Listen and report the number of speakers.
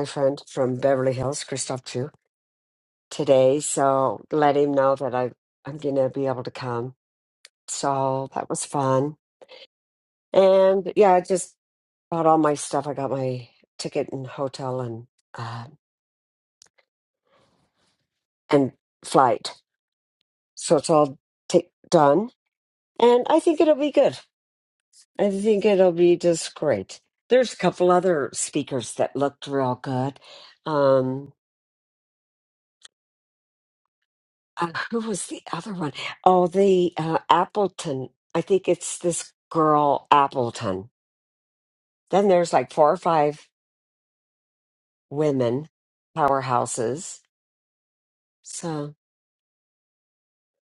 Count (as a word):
one